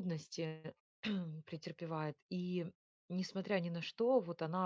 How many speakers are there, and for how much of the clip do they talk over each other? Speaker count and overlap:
1, no overlap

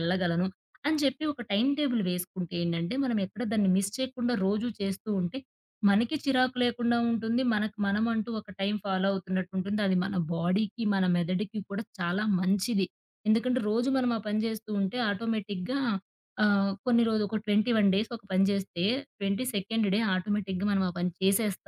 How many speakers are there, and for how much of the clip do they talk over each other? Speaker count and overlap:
1, no overlap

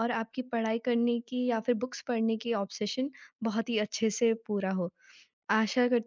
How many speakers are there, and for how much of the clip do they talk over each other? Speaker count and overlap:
1, no overlap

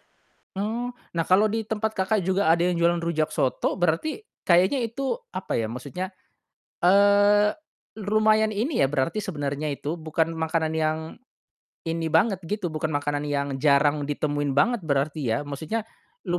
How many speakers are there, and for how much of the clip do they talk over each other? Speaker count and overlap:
1, no overlap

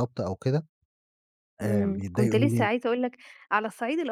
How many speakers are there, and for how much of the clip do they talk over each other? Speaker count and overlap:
2, about 26%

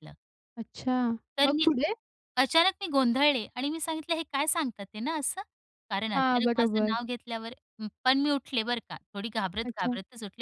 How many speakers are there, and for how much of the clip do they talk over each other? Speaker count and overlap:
2, about 14%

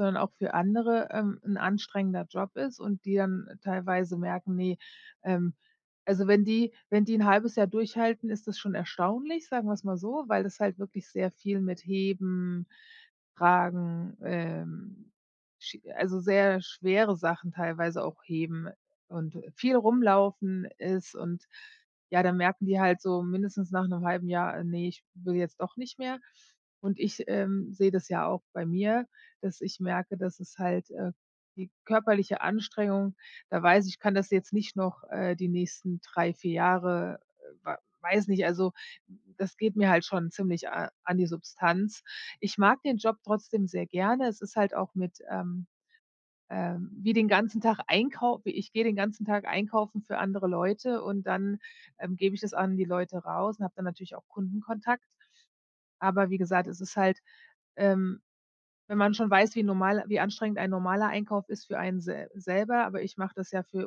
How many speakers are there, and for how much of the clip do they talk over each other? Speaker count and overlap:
1, no overlap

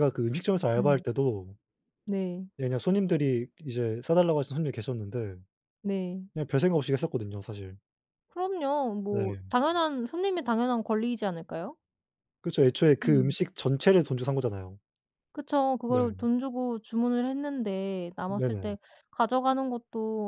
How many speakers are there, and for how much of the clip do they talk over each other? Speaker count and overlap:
2, about 6%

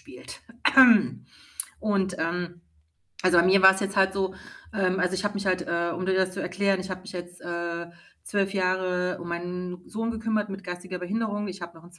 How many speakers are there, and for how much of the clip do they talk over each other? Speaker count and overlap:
1, no overlap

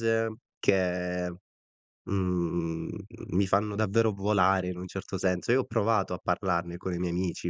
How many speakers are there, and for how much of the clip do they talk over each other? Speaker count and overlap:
1, no overlap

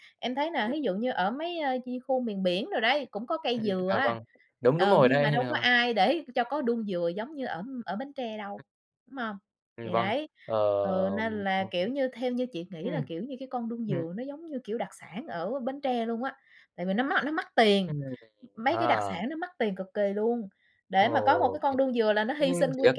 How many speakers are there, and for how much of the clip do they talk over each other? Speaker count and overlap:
2, about 17%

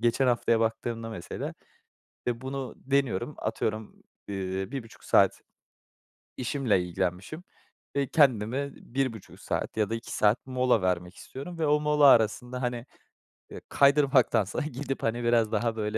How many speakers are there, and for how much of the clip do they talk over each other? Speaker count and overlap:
1, no overlap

